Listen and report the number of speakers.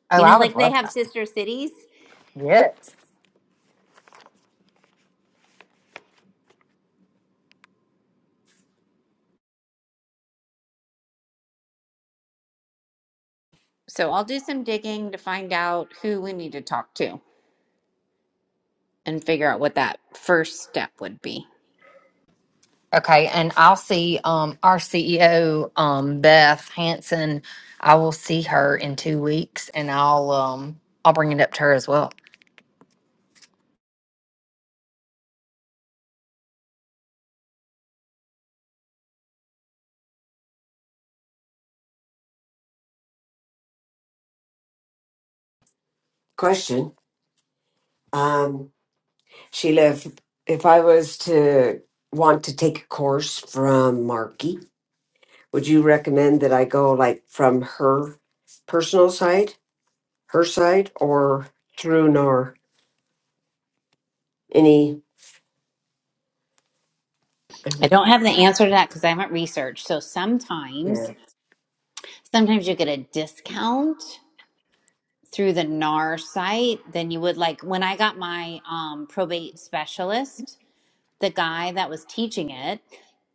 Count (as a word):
three